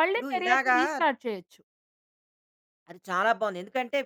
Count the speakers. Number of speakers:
two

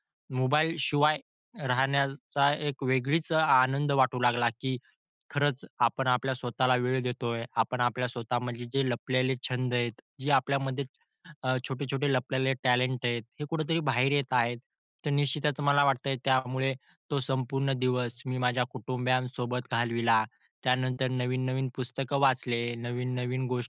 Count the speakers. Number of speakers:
one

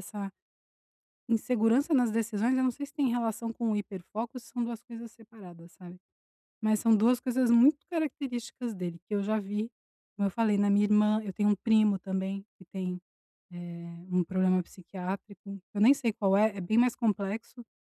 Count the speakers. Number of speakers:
one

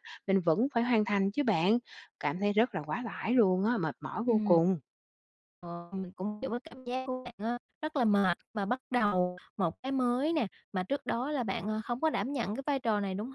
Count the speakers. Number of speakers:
two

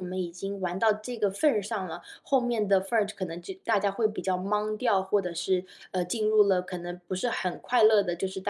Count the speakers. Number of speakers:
one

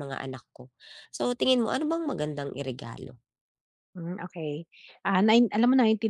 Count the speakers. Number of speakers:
two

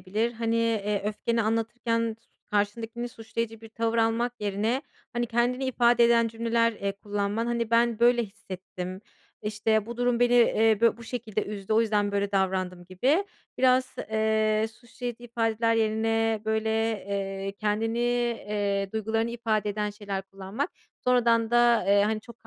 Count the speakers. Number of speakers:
one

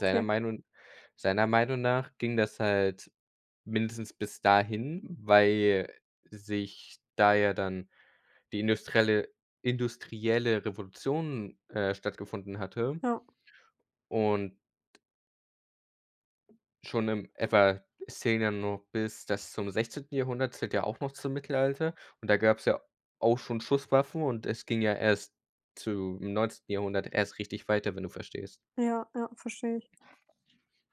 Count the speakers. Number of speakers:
two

